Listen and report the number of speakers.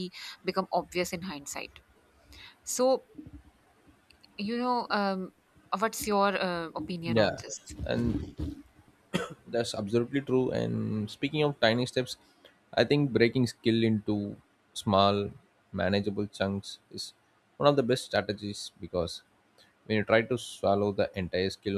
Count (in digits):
2